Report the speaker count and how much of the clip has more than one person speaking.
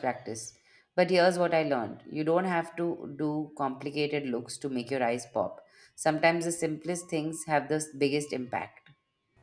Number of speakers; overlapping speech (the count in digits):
1, no overlap